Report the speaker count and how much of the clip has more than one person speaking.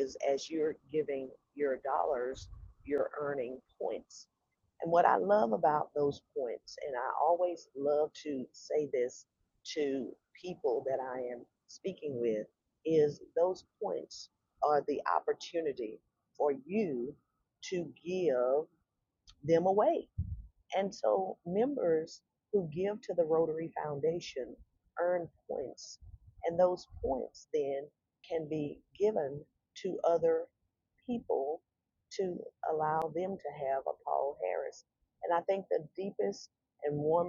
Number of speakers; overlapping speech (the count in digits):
1, no overlap